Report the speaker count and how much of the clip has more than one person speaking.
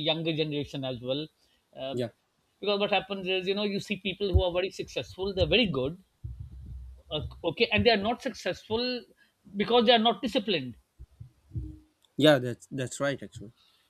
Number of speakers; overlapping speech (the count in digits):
2, under 1%